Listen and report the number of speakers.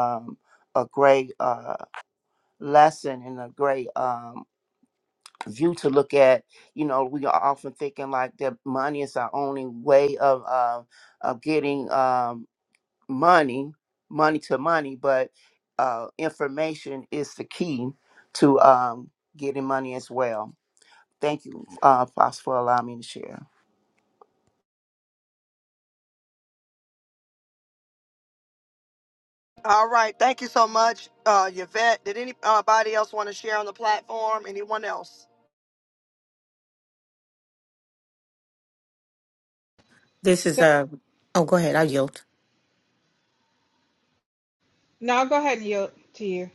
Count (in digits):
4